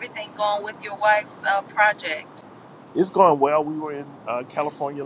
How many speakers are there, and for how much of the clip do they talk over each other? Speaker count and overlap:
2, no overlap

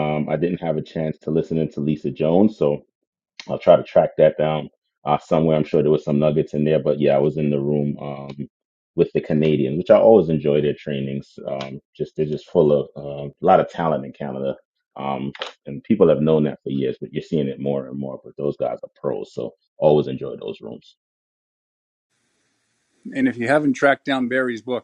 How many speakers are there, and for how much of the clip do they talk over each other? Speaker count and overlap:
2, no overlap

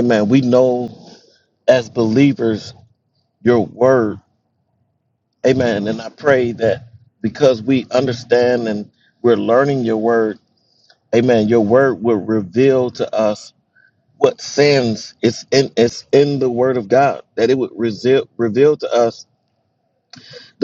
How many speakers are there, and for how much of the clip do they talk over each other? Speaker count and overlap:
1, no overlap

